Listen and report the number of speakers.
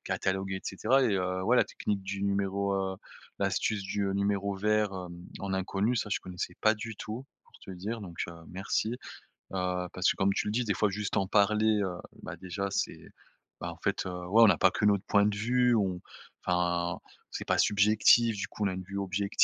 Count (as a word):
one